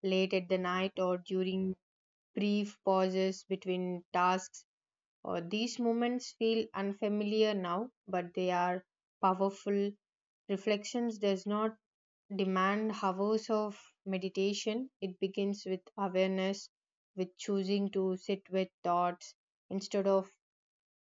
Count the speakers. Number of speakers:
one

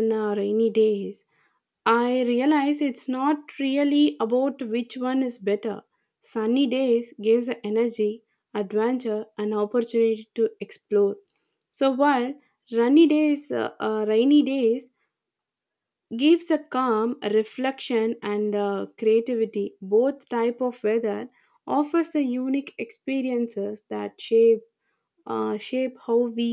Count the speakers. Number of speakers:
one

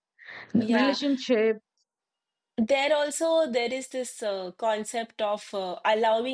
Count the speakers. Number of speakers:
two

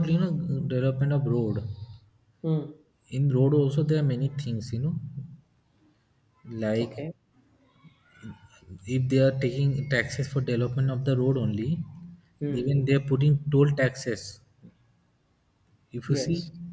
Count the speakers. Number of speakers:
two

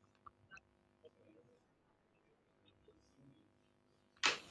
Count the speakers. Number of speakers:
zero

